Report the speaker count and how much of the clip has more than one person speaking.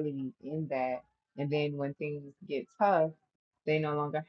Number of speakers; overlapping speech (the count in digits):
1, no overlap